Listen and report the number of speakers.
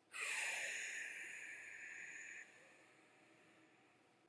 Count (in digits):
0